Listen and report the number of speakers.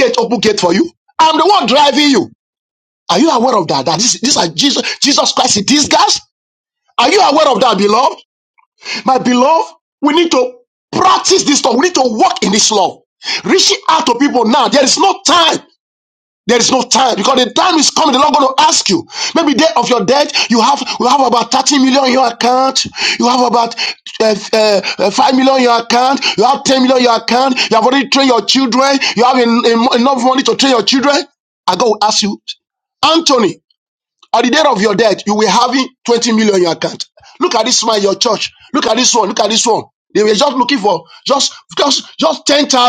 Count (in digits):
1